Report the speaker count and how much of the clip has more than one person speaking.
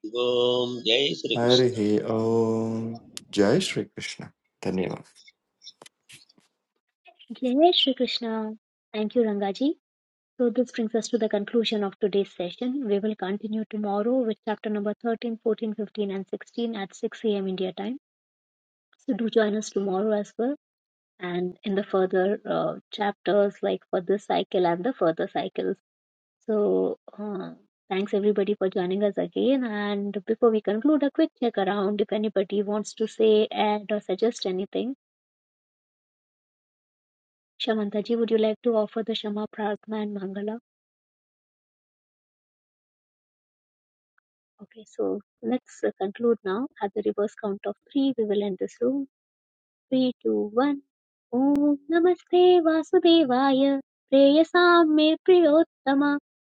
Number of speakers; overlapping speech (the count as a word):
three, about 1%